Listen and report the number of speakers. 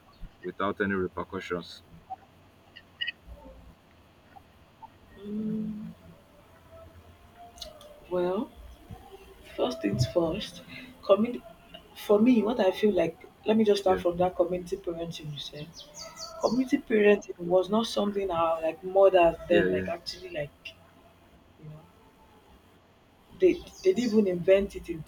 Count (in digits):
2